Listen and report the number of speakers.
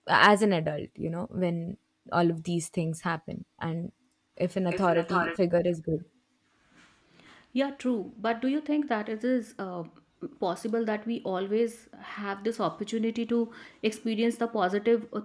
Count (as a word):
two